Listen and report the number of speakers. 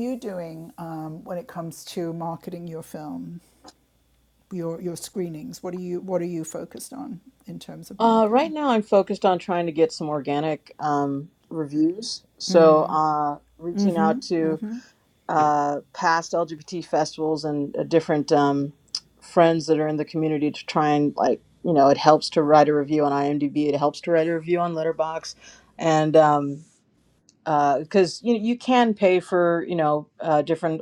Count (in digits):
2